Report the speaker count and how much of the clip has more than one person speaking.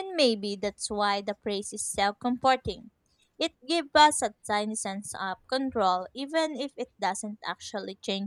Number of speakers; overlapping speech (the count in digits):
1, no overlap